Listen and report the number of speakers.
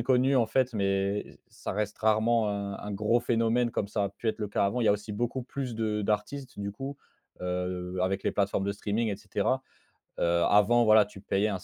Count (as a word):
one